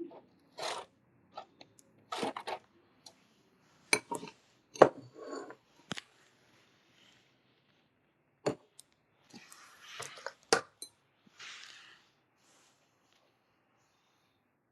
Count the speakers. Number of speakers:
zero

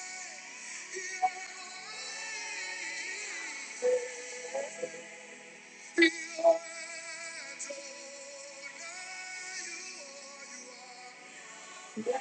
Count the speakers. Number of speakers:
zero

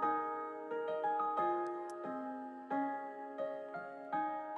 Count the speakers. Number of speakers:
zero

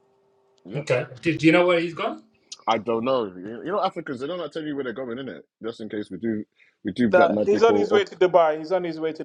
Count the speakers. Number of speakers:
three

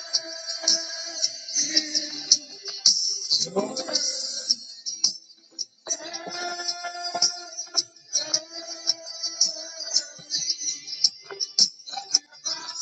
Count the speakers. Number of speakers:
zero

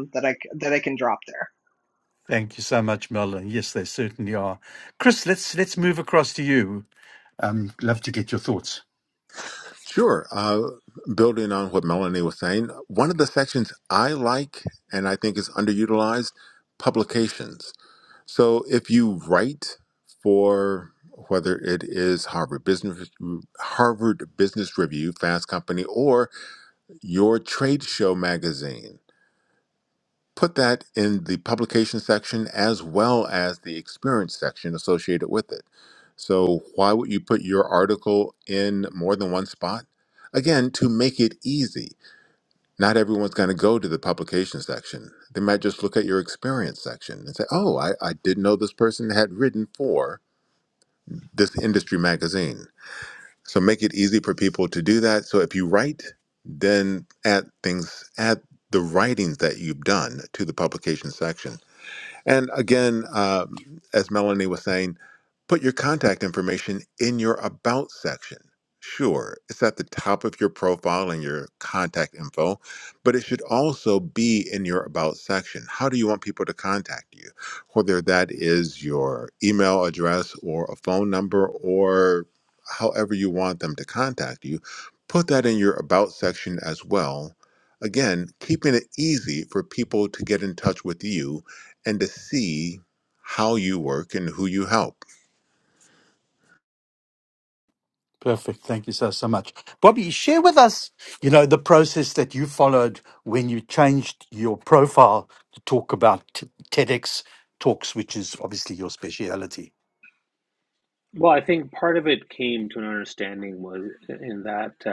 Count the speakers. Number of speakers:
four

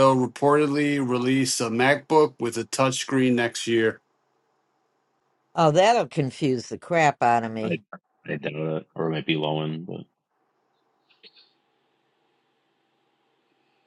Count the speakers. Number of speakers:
three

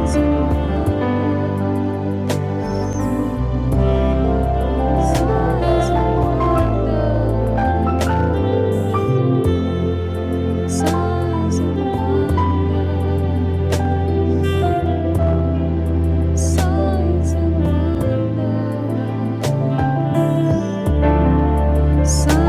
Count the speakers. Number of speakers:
zero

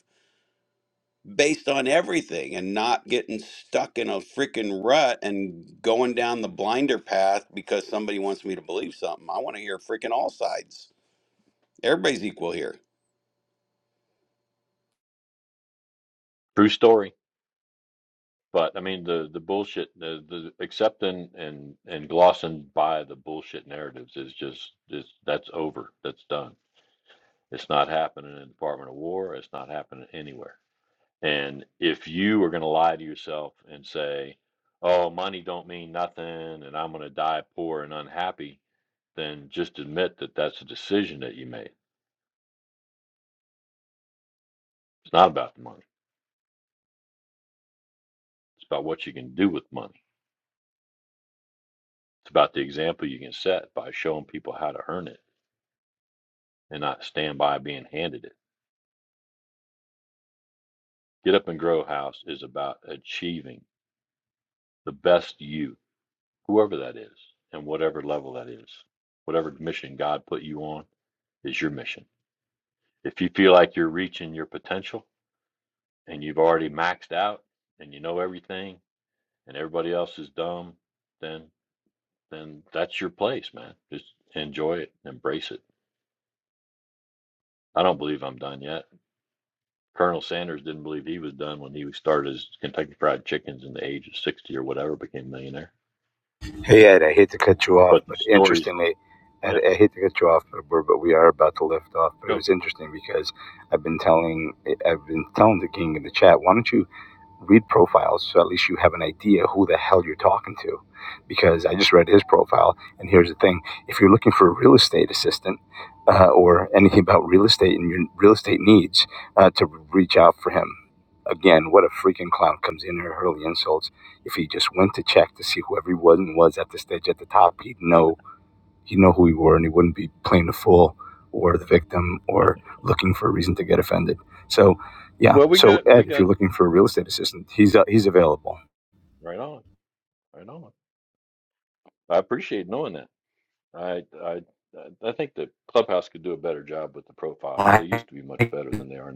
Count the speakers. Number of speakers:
three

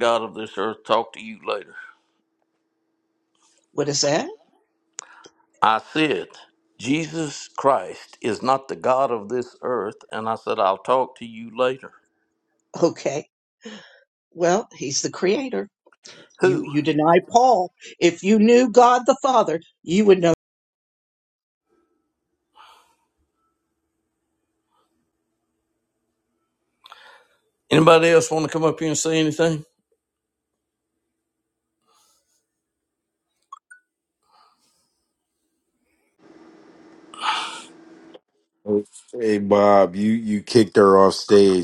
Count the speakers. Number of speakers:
three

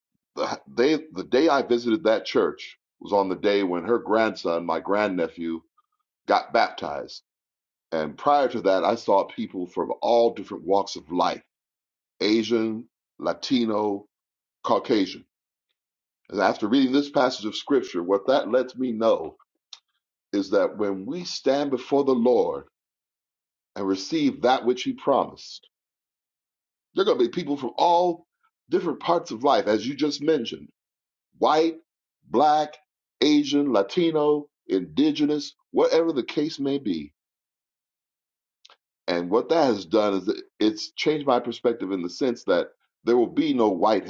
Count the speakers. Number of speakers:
one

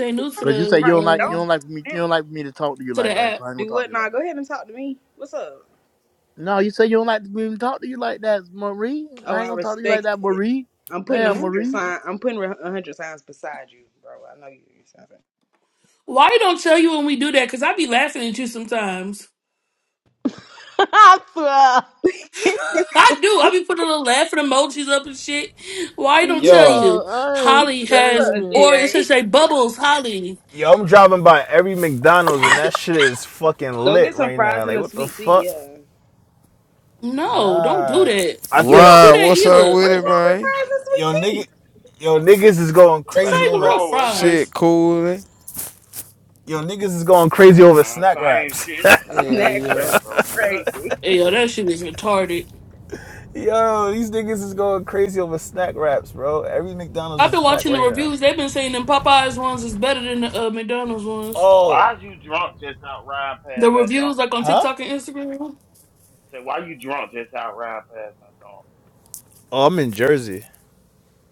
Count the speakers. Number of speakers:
seven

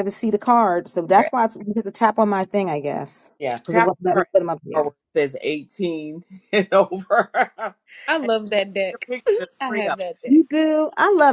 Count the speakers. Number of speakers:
three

